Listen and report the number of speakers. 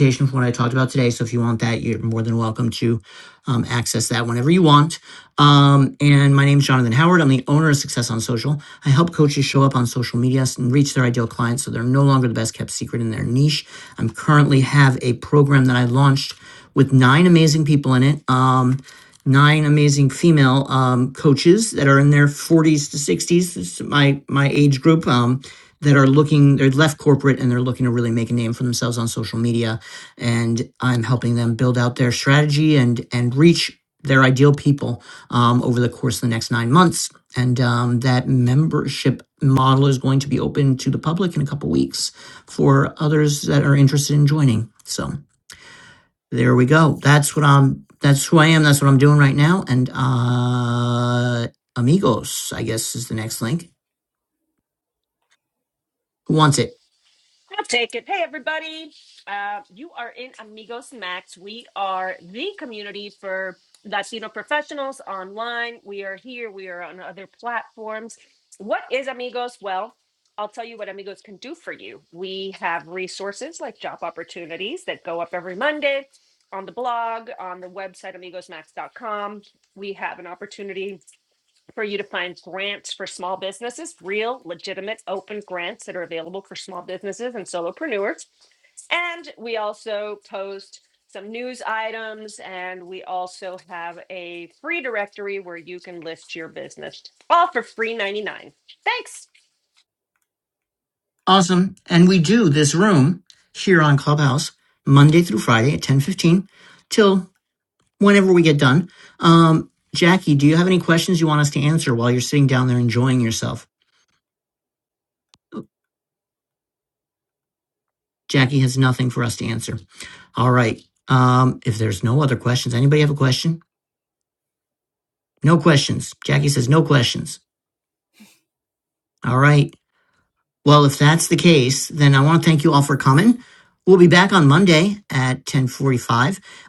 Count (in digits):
2